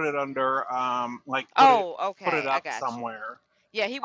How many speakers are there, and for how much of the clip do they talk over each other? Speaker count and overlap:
two, about 27%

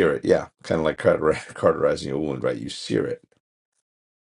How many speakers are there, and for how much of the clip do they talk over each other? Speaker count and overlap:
one, no overlap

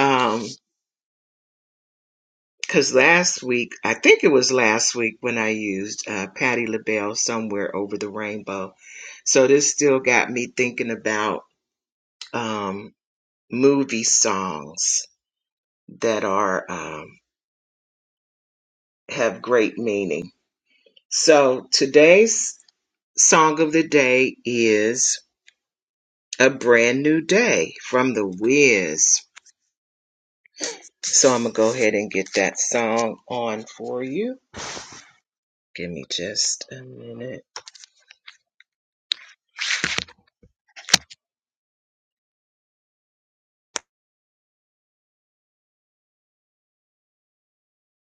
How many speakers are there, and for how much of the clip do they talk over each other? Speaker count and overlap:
one, no overlap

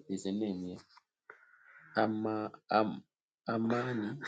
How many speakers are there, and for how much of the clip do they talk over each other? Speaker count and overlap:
one, no overlap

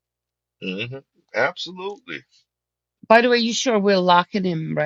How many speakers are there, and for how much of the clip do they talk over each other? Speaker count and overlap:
two, no overlap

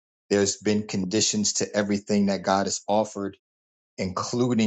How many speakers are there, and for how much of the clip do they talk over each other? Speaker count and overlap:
one, no overlap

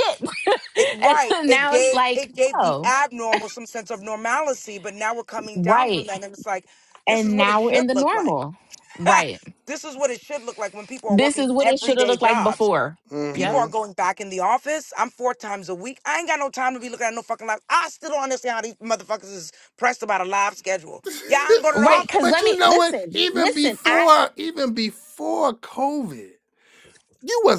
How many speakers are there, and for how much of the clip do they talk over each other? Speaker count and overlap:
three, about 28%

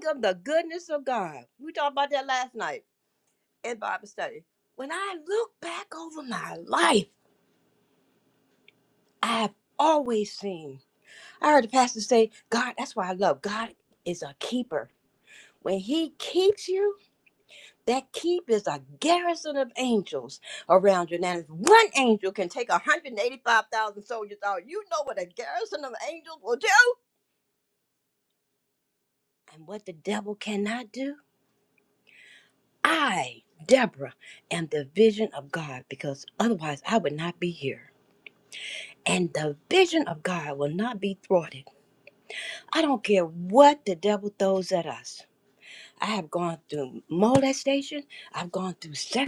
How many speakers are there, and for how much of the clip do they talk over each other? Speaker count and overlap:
one, no overlap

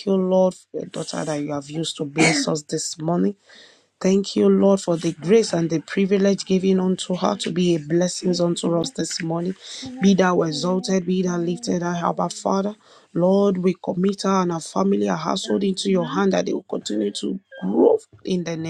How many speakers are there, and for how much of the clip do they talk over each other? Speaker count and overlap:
one, no overlap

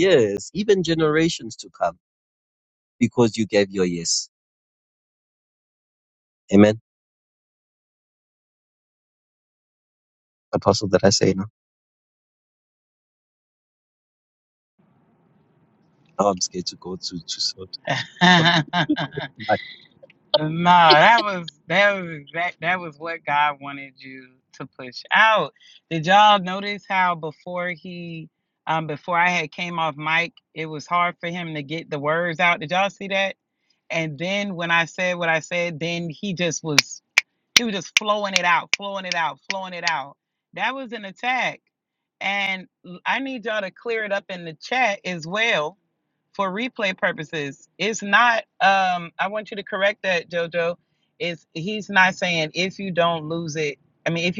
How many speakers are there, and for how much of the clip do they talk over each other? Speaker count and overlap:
two, no overlap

